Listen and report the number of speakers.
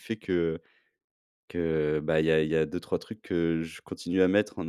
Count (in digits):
1